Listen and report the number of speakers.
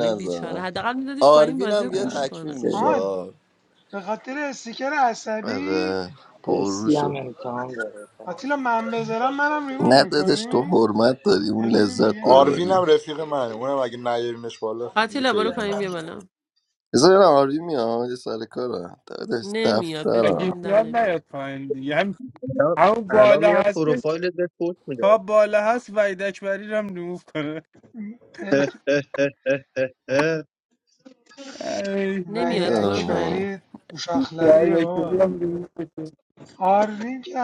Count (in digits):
7